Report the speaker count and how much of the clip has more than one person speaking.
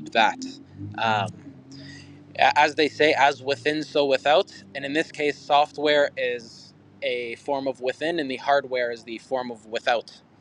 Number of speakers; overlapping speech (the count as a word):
one, no overlap